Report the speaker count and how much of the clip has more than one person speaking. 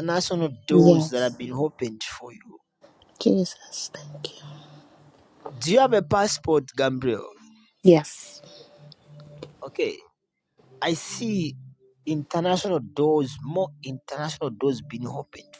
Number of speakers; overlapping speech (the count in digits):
2, about 2%